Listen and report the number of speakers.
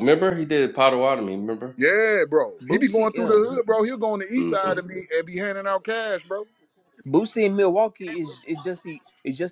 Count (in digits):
3